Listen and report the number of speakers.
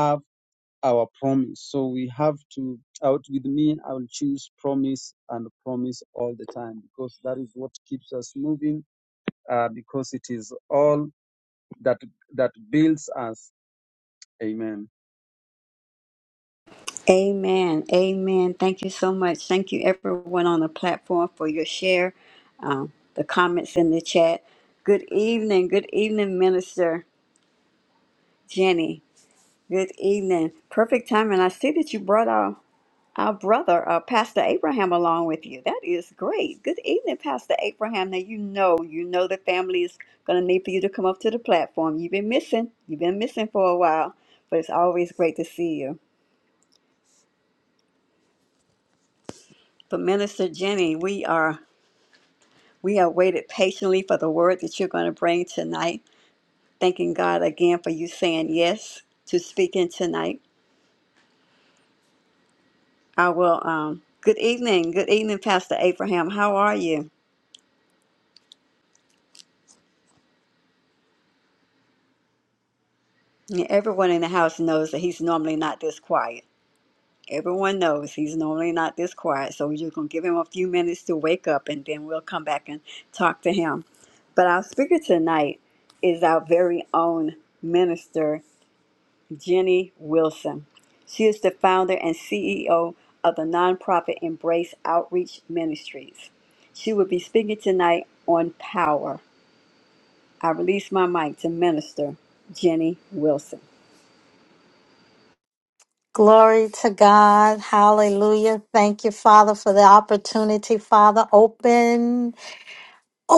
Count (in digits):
3